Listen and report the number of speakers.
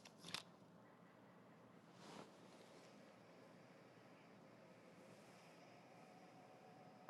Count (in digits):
0